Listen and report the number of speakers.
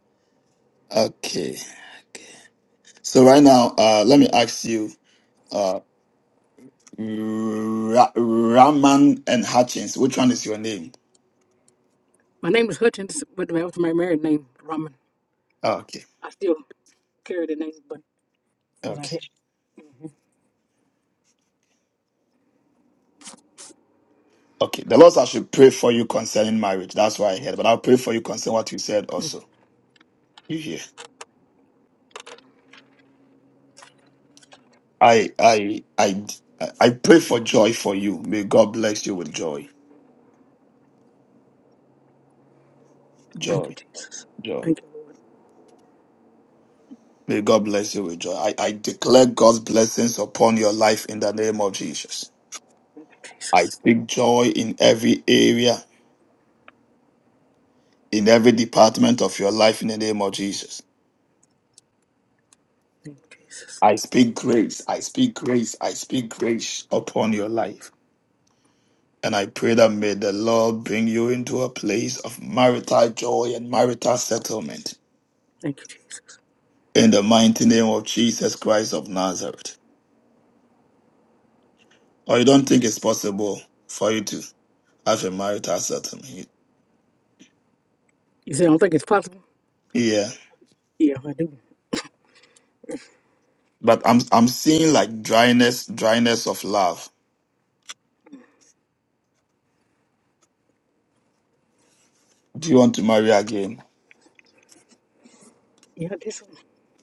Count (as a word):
two